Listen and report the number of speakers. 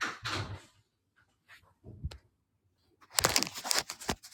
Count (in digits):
0